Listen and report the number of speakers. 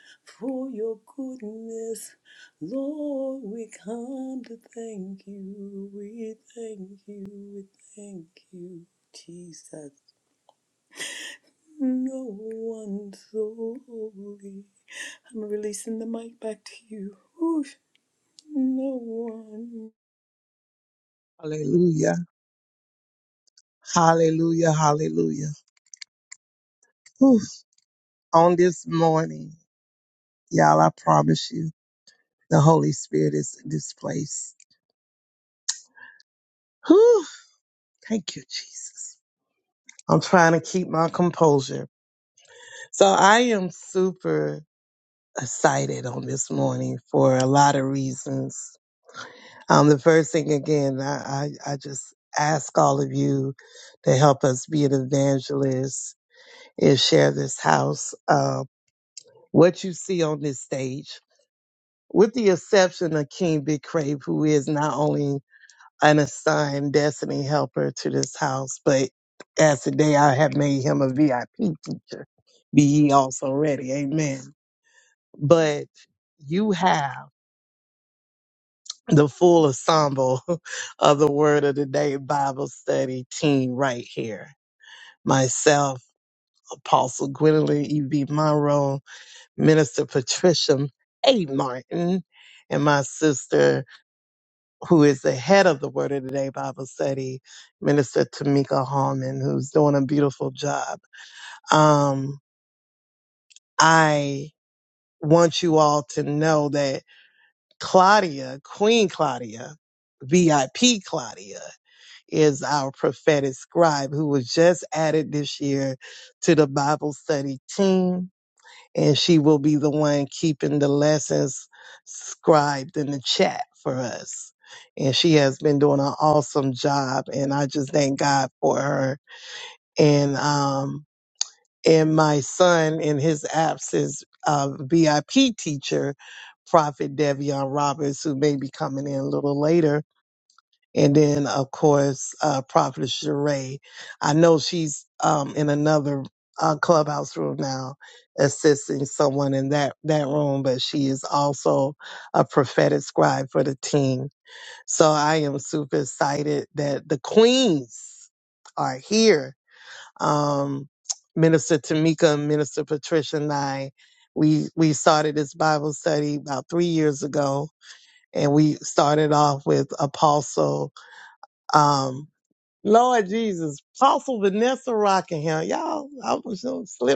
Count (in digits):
2